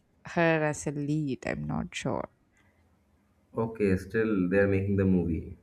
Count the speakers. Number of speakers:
2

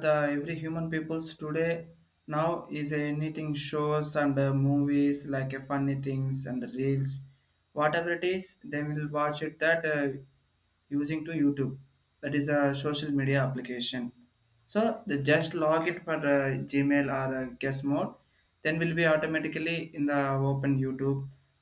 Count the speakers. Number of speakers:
1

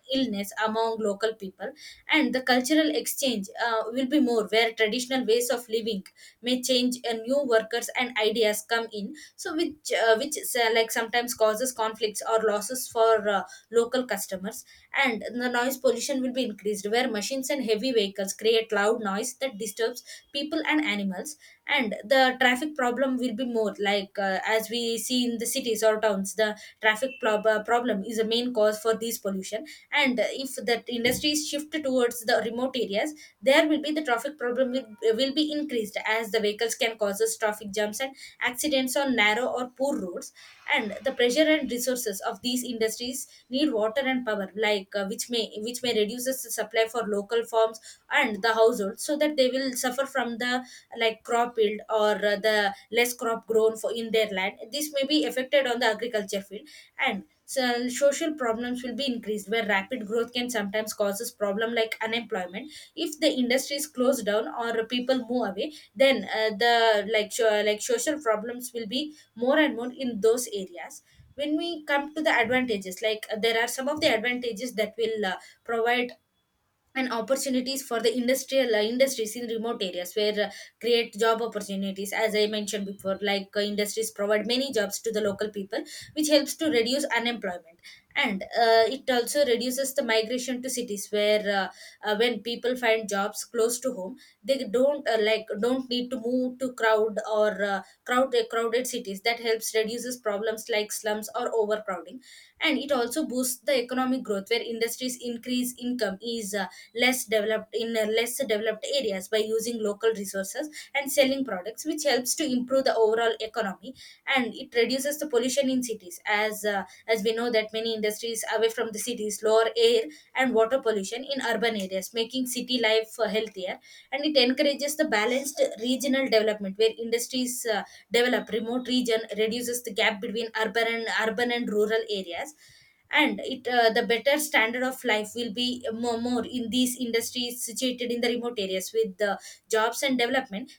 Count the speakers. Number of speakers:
1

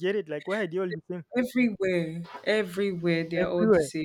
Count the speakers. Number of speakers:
2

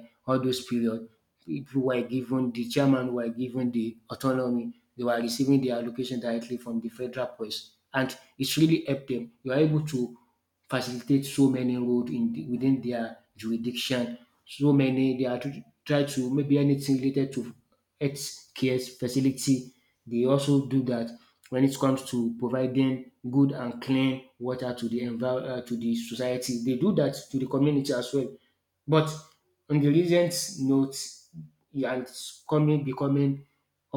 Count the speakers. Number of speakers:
1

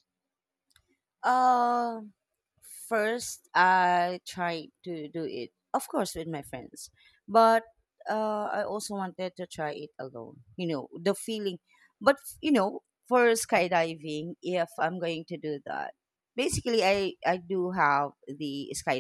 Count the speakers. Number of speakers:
1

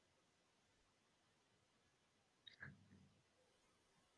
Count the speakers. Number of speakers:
0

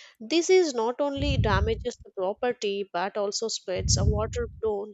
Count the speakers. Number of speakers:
1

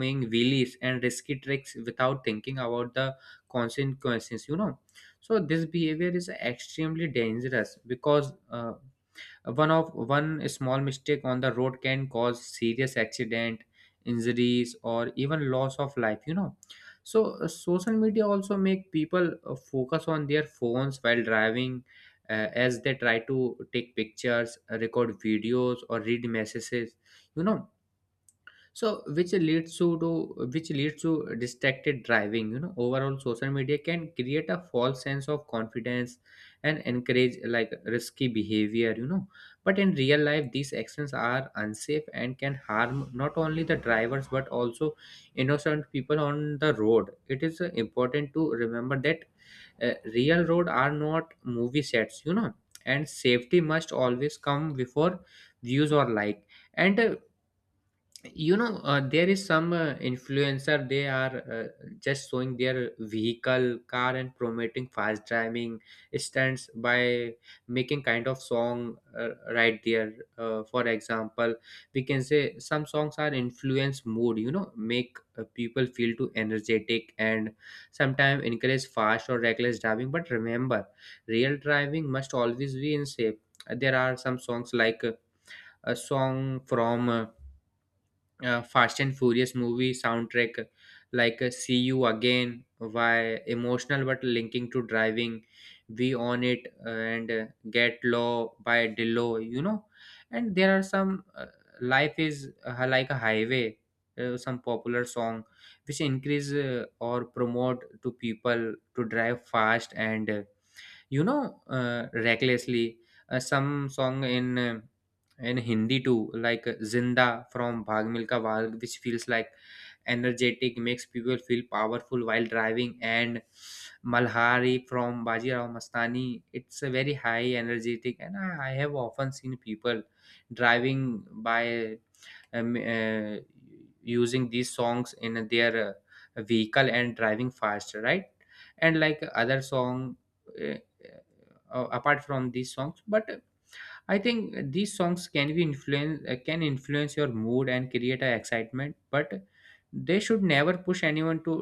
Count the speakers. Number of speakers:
1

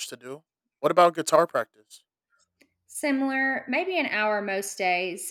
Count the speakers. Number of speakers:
2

